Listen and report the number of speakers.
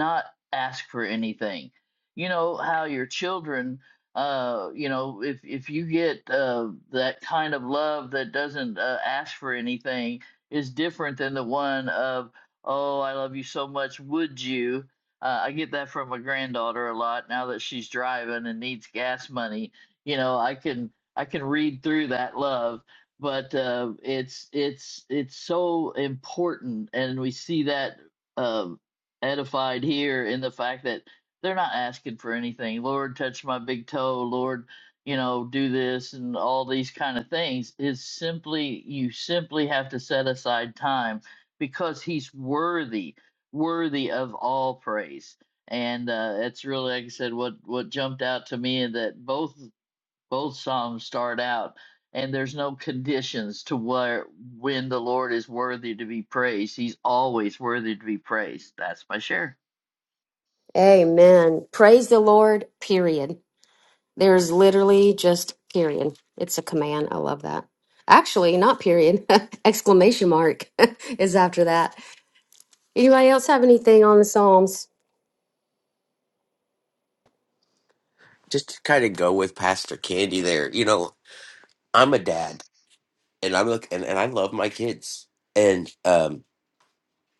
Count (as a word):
three